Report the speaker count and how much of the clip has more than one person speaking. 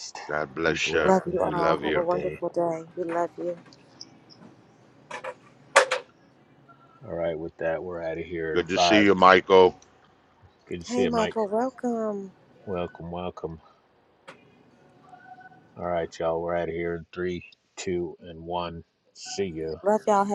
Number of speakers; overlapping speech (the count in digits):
3, about 14%